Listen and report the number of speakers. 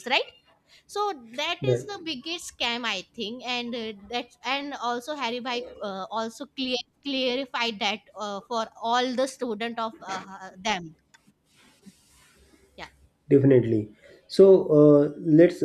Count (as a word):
two